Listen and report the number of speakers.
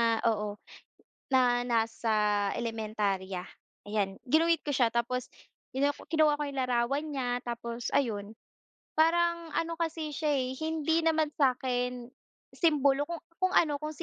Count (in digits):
1